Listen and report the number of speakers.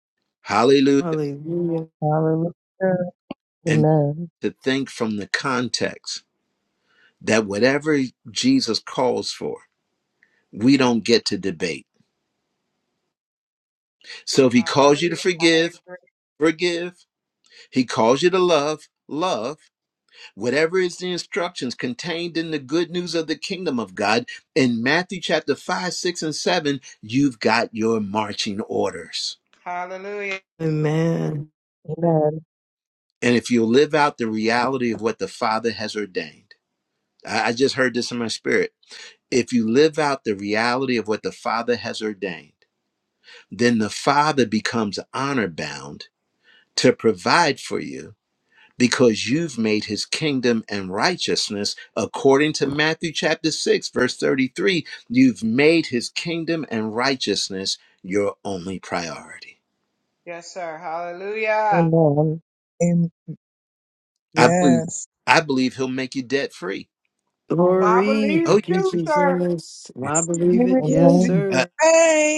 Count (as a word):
five